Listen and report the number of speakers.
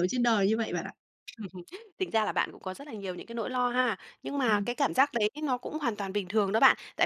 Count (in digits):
2